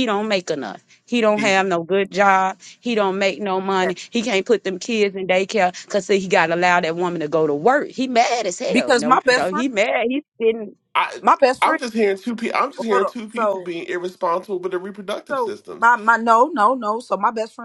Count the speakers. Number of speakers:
three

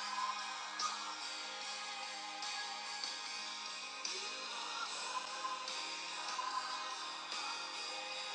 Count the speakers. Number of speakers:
zero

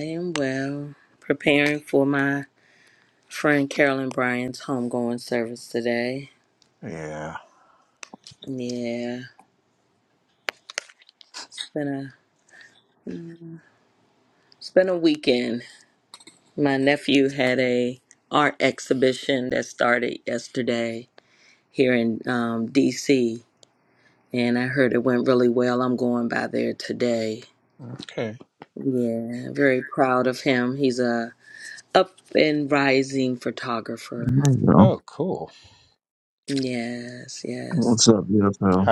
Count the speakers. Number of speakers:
three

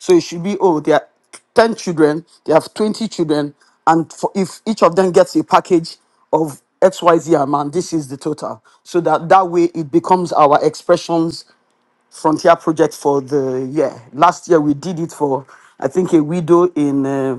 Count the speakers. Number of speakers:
one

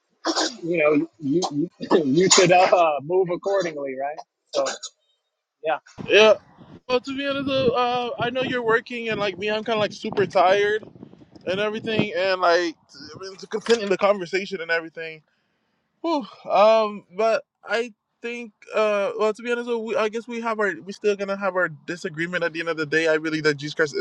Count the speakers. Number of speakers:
two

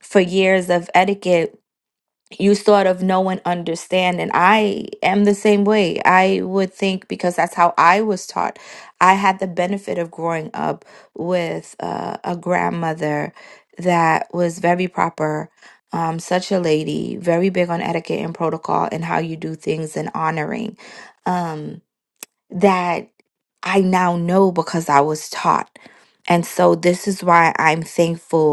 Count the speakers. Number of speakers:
one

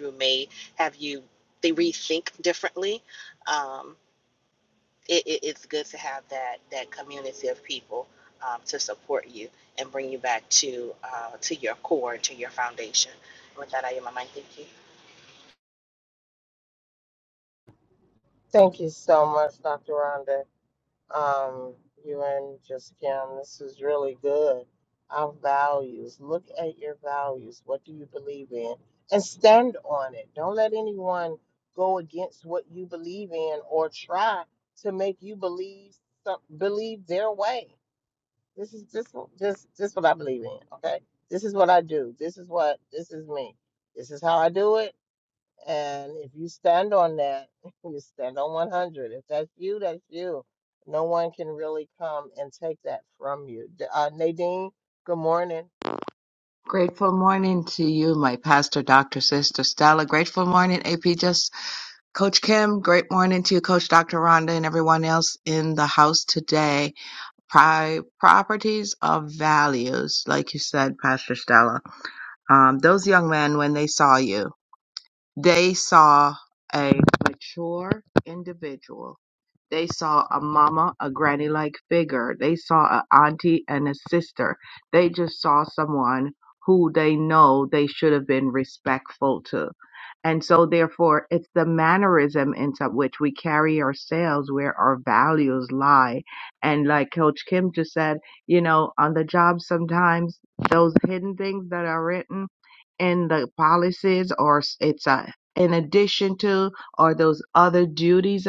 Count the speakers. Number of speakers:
three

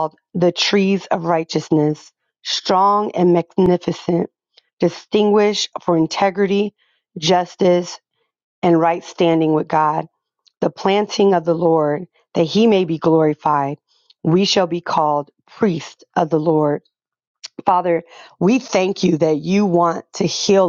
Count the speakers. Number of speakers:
one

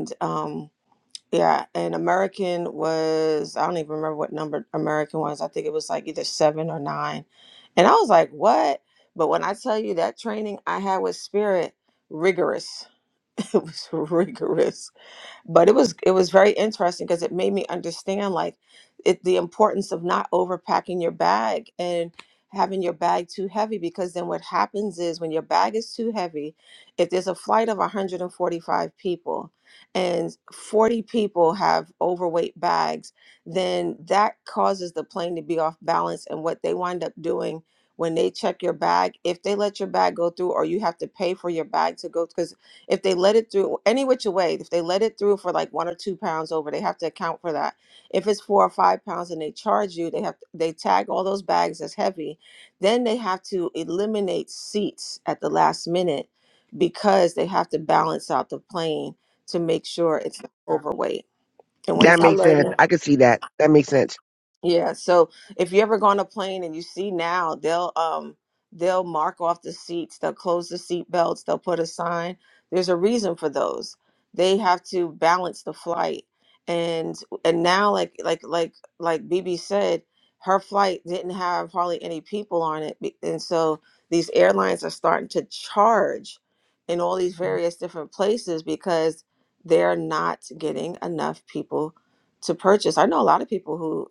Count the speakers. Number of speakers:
two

